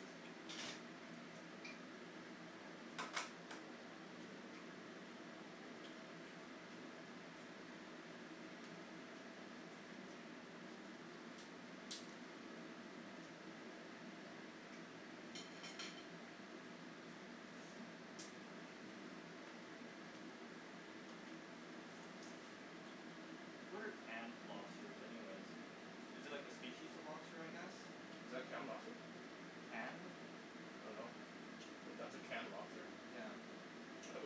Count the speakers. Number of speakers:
2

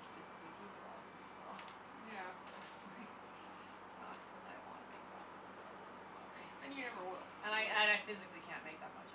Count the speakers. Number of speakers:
2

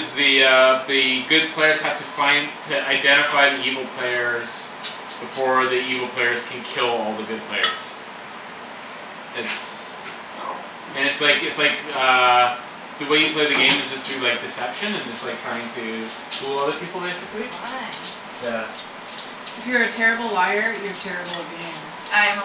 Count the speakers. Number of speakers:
3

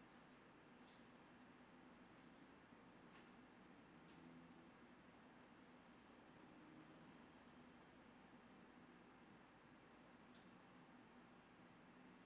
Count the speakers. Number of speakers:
0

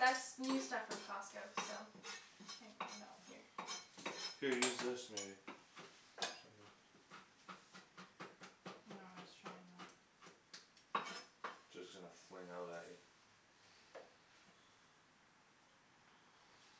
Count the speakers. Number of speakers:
3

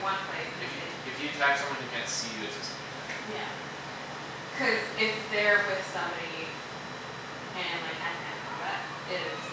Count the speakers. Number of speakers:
2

